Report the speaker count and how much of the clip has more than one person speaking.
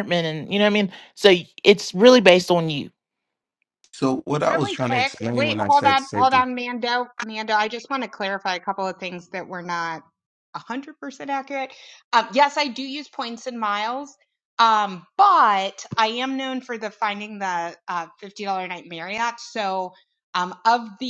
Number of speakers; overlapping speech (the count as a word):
three, about 9%